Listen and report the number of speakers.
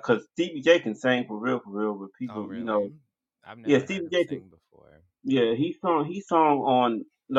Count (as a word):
two